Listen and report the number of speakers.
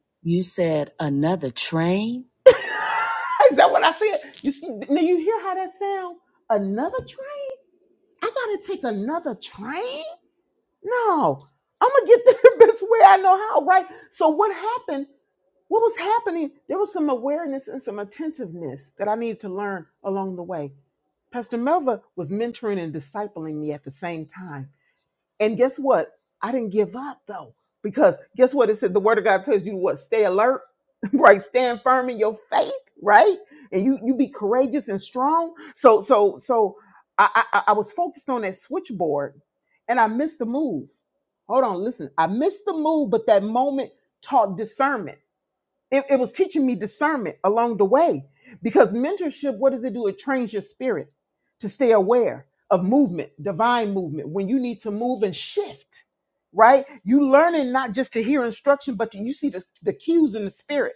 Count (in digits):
2